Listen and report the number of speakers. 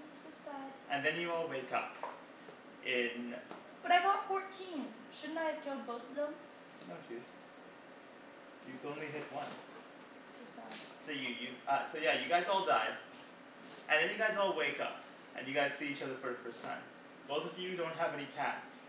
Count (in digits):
2